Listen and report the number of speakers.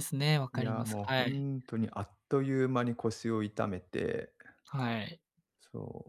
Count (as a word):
two